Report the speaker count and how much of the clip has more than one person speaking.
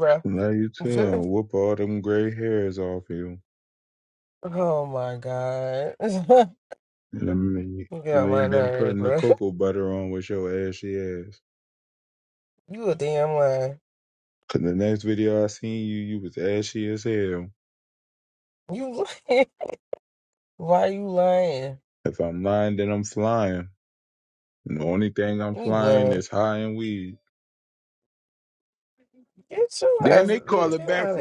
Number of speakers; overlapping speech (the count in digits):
2, about 10%